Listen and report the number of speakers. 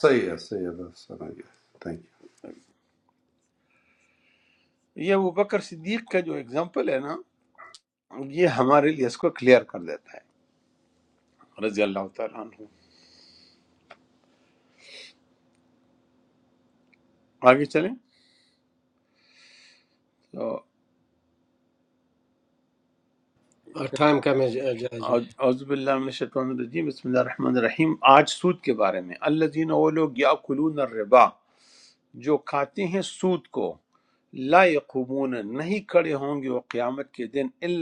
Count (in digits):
3